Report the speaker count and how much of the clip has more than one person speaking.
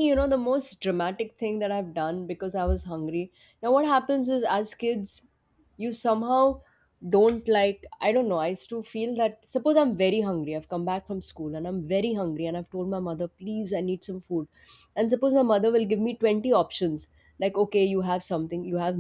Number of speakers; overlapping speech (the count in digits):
1, no overlap